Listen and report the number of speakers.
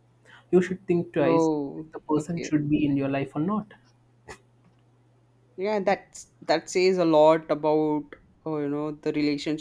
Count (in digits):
2